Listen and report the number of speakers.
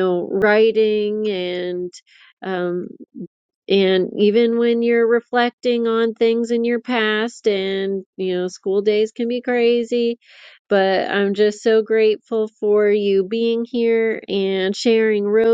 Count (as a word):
one